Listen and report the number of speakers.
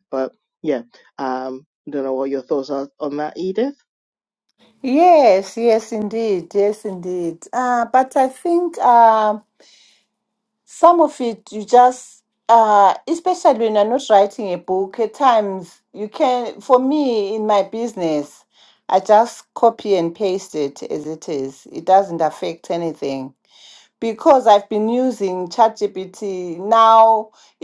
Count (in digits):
2